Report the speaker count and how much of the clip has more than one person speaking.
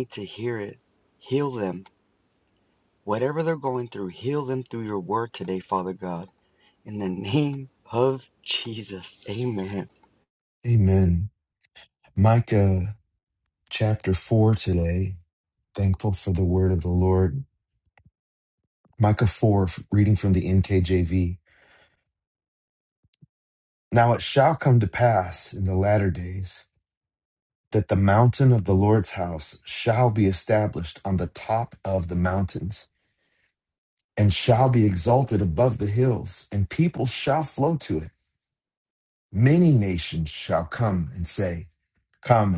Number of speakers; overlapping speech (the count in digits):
2, no overlap